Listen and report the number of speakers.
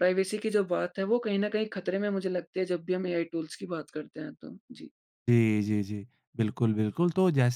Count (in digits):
2